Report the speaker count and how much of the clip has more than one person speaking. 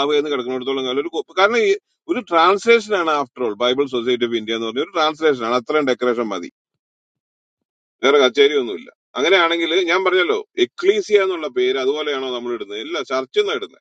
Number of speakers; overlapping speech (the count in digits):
1, no overlap